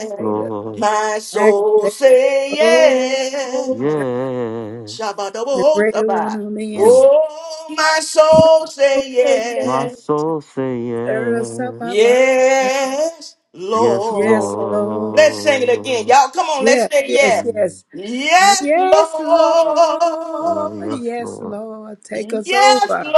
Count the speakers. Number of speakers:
three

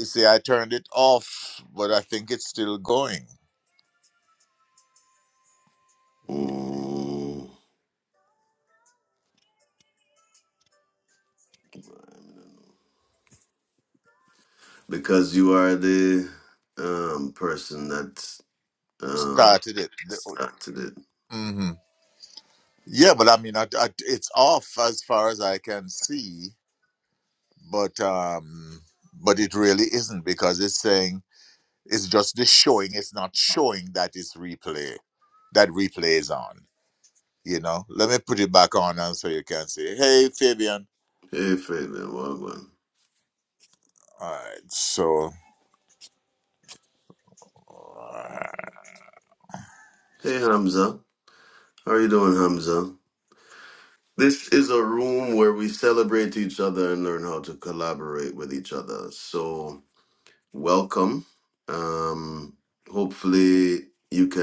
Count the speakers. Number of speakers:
two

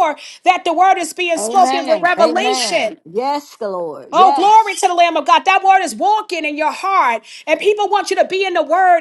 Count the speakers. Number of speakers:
two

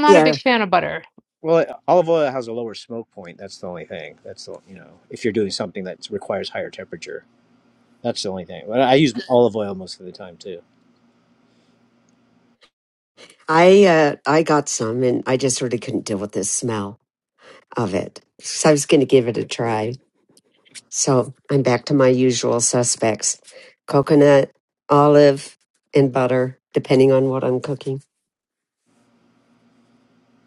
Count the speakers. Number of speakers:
three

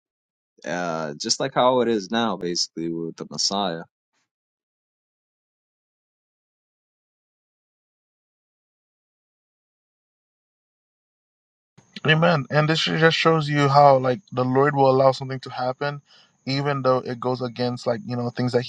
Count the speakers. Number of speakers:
two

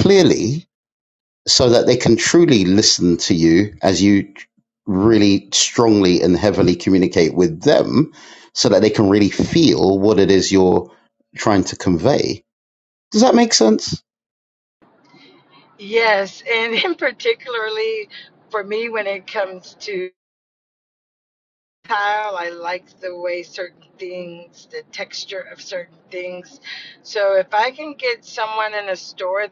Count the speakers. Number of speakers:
two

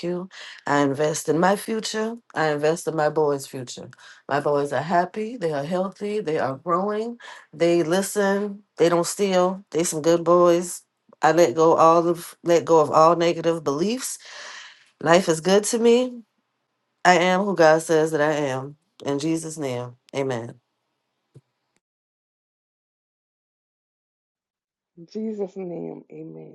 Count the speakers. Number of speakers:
two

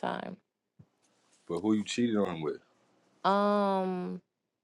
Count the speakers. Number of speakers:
two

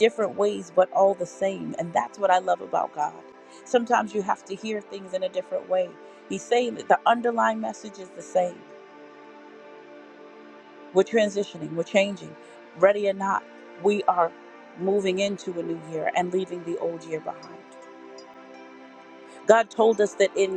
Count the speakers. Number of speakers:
one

